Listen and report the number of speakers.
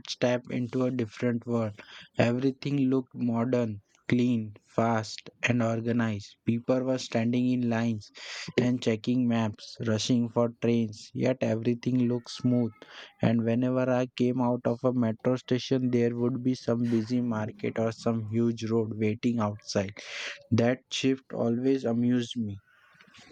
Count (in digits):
1